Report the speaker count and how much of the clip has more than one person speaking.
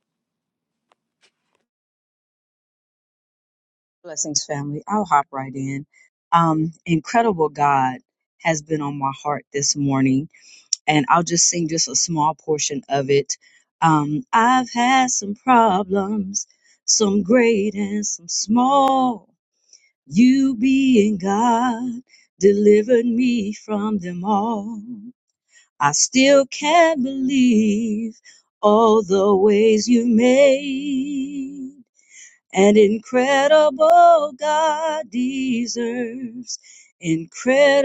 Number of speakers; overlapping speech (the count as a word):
one, no overlap